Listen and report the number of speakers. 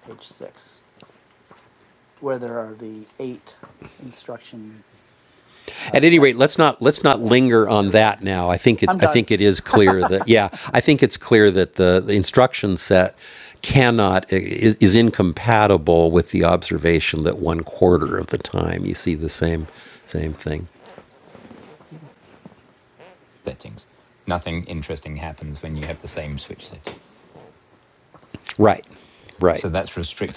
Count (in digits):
3